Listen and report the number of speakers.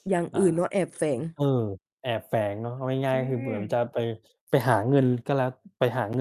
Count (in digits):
2